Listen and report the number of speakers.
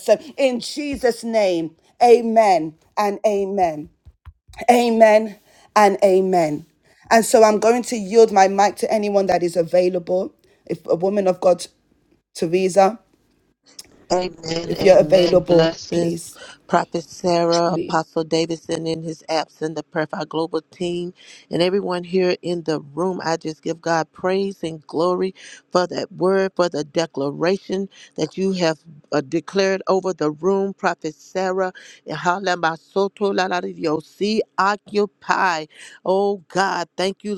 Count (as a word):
two